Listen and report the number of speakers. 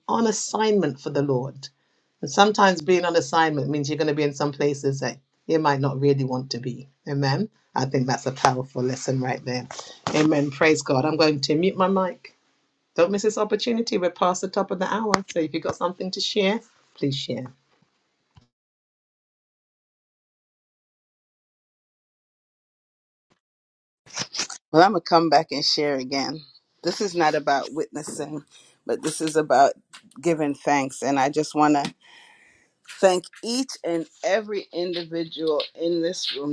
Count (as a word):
two